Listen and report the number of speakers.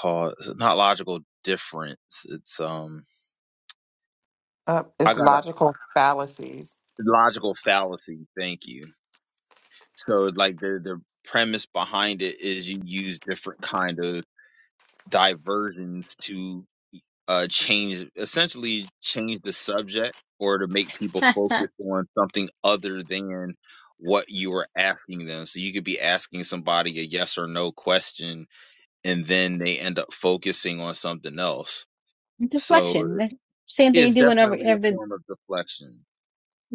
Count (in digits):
3